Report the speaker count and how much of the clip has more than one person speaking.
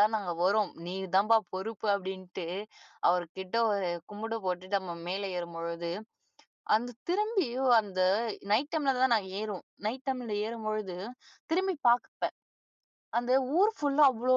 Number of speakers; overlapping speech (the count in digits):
1, no overlap